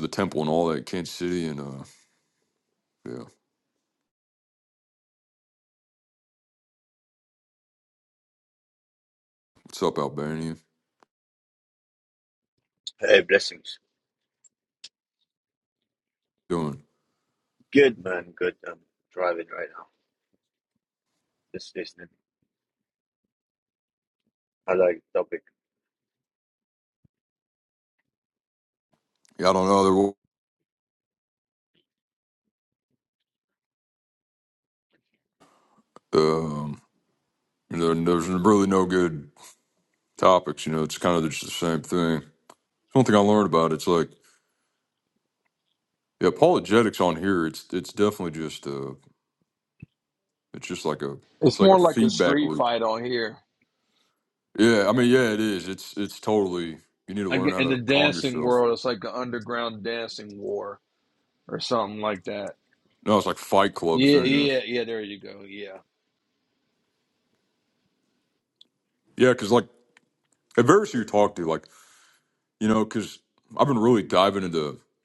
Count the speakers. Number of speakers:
3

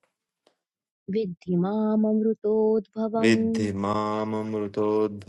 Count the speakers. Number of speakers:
2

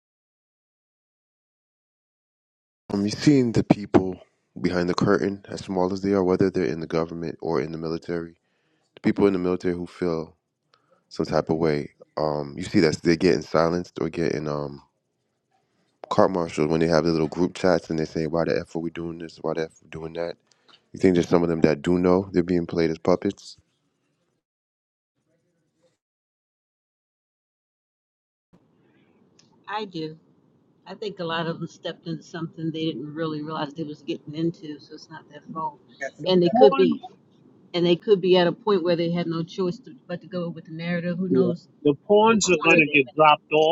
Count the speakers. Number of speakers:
3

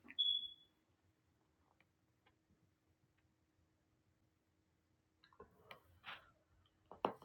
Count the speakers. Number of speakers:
0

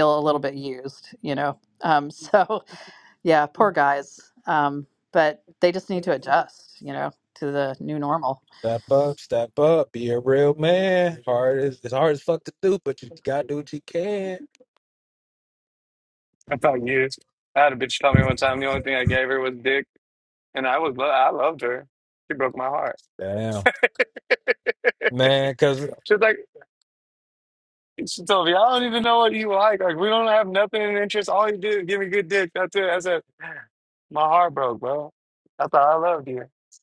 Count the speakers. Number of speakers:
3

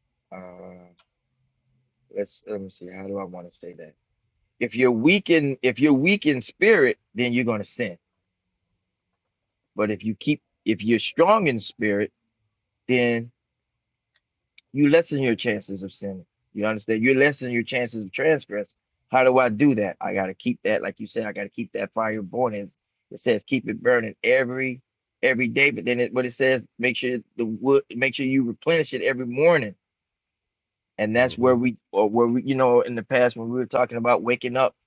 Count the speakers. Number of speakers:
1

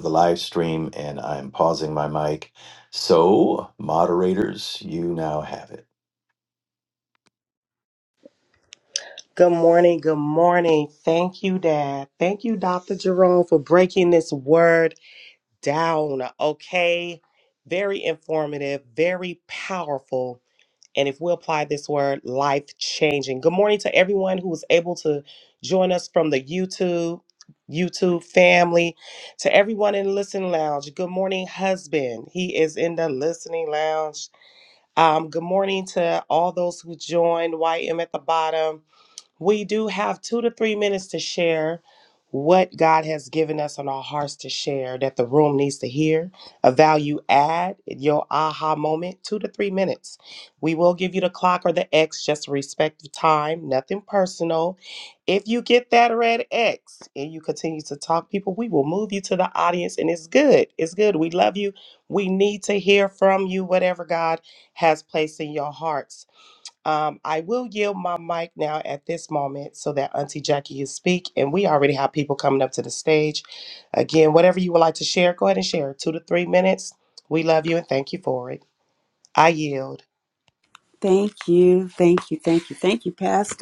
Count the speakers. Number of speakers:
3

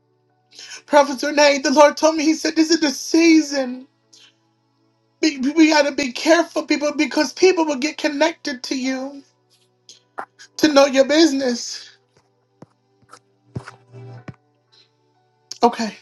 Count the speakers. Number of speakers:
1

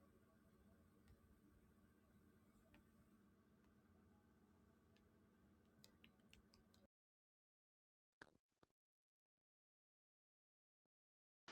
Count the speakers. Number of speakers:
0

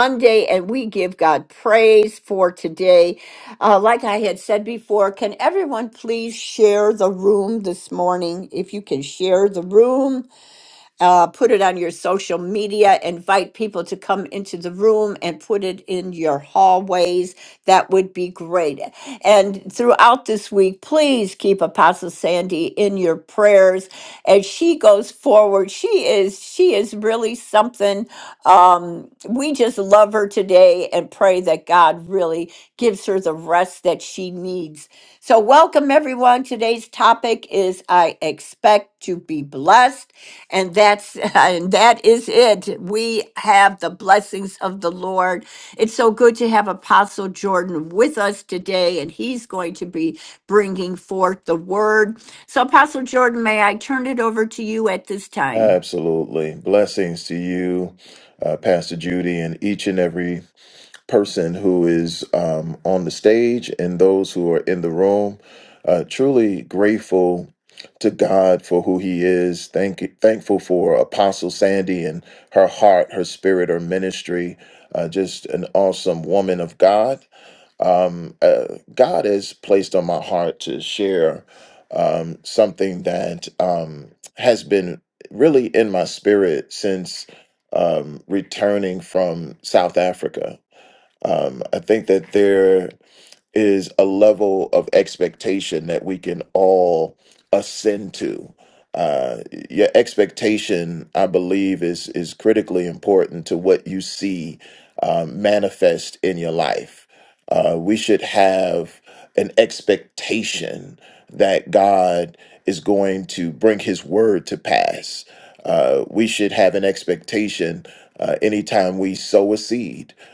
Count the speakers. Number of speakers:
2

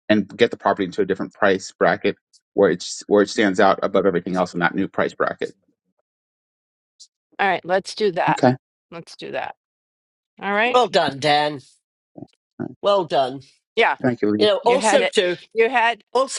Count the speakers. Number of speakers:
3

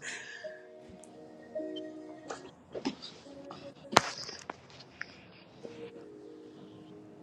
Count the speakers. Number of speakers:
0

